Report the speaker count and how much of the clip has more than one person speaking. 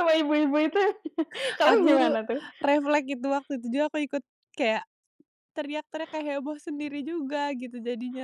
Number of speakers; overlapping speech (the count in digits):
2, about 4%